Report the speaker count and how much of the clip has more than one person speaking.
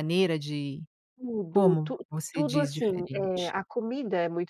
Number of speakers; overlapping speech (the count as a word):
two, about 43%